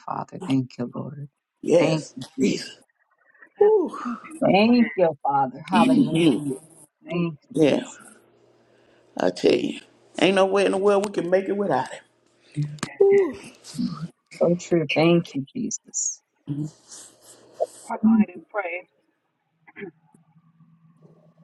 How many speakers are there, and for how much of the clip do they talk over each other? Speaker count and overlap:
three, about 12%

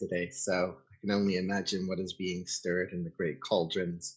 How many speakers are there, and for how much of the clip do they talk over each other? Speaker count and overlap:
one, no overlap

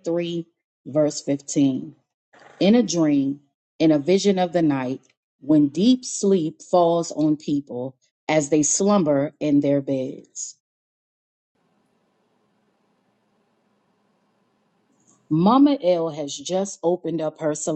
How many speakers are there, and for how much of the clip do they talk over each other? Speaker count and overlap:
one, no overlap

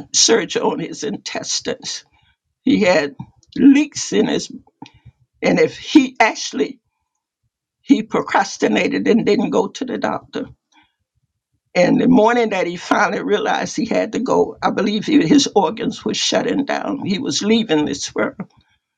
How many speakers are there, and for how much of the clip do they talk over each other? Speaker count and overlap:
one, no overlap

